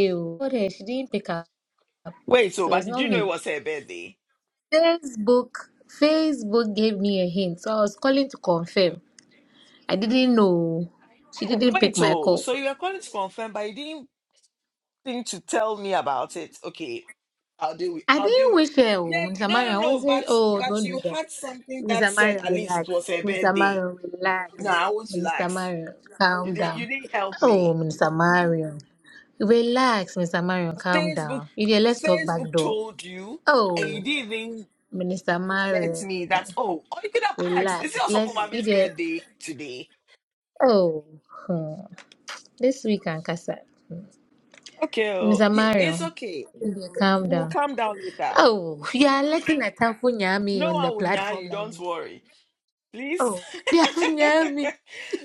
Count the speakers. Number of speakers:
two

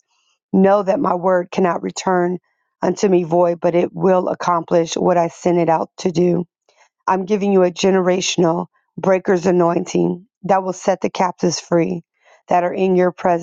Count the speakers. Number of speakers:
one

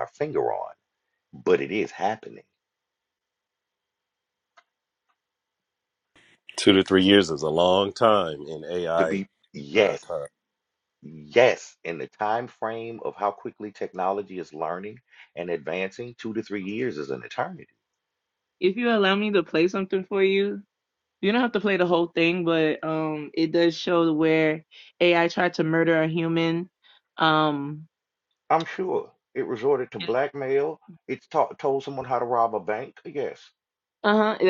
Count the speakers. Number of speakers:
three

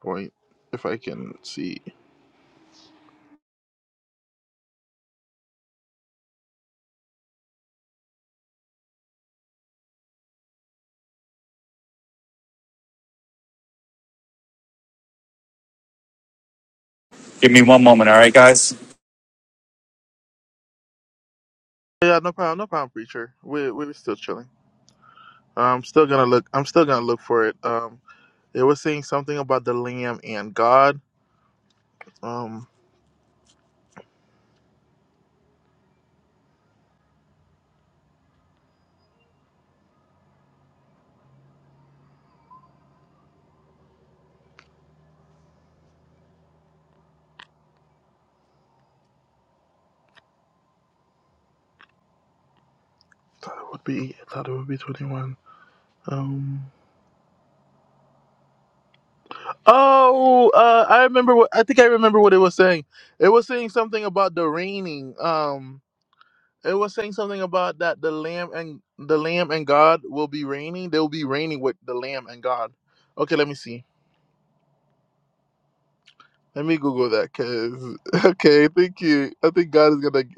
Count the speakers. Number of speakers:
two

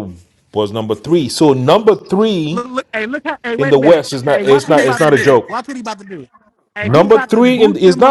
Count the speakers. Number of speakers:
two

